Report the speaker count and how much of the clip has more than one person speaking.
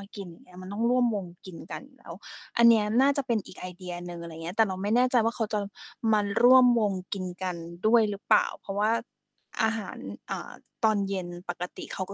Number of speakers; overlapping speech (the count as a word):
one, no overlap